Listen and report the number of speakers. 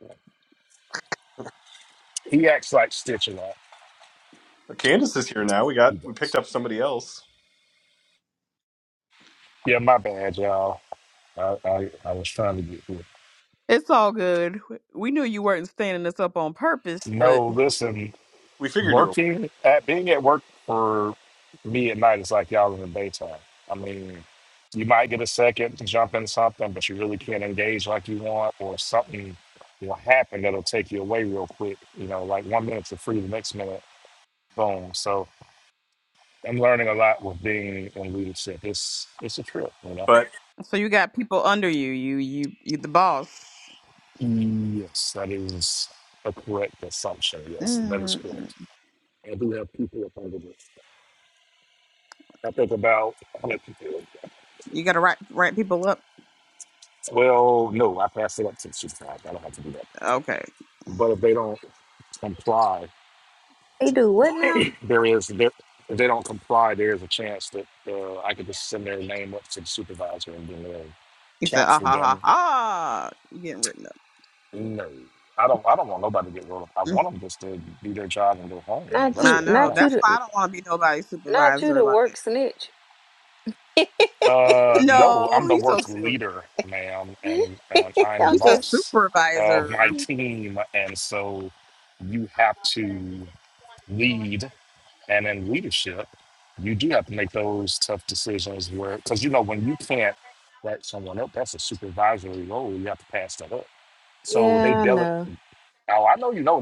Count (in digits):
4